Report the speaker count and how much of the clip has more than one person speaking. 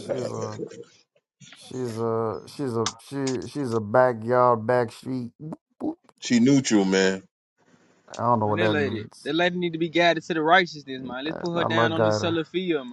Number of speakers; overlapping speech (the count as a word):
three, about 17%